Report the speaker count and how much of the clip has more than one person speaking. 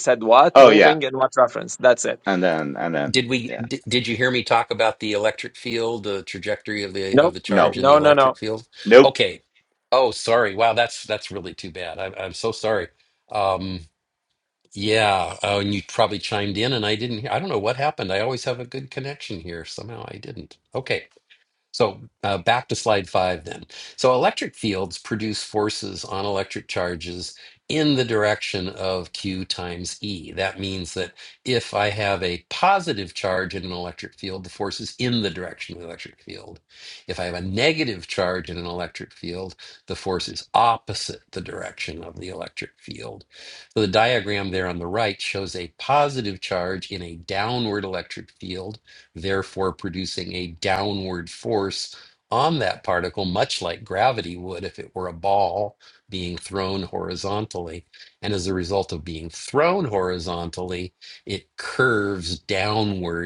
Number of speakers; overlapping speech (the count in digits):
3, about 3%